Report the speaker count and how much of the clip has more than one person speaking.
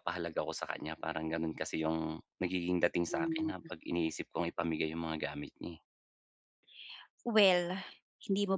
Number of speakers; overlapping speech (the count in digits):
2, about 5%